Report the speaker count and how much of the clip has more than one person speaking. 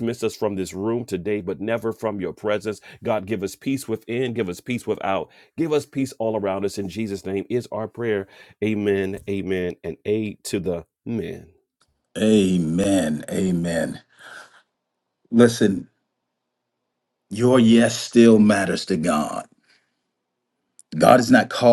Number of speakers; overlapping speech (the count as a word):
two, no overlap